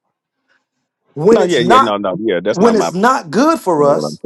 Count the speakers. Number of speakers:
2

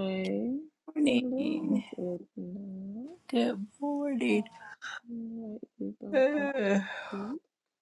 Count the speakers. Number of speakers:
2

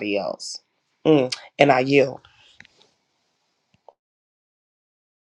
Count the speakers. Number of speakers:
1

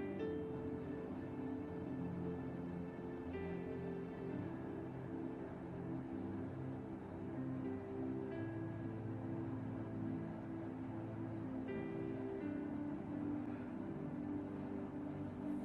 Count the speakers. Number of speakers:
0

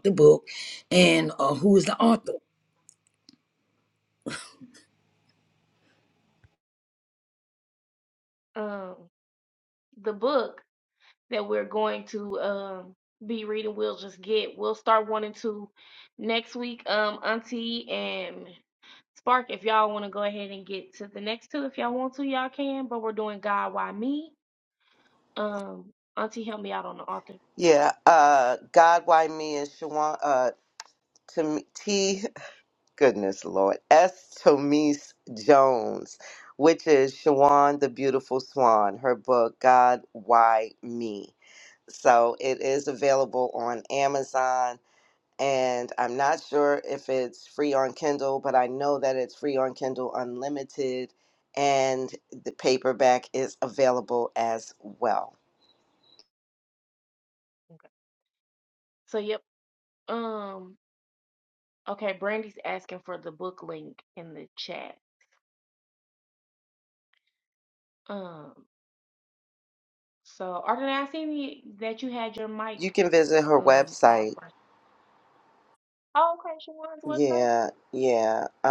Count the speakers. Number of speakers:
3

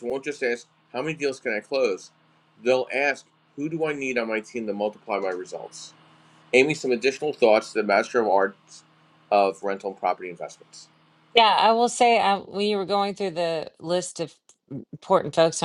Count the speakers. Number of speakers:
2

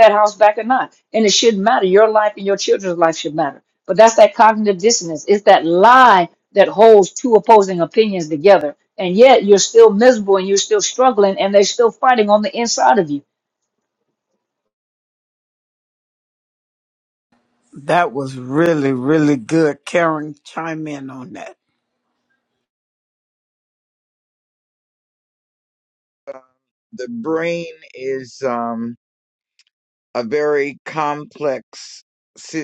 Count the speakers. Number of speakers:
3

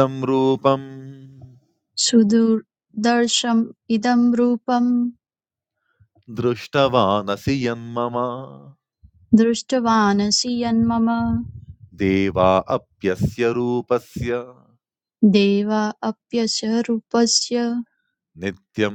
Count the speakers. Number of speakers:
2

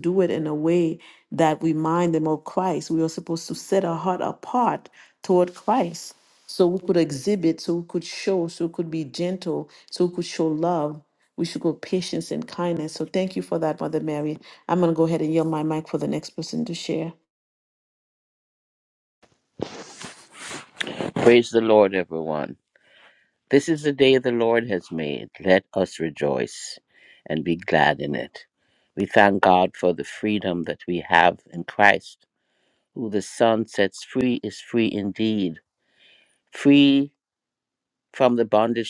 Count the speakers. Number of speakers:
2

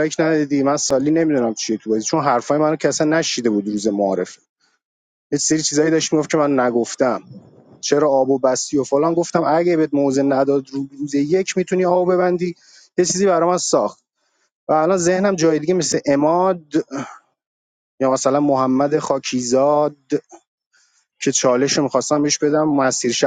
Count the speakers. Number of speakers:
1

